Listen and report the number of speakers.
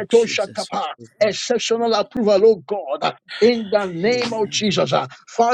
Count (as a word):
two